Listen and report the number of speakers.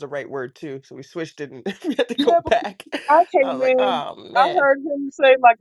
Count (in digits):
2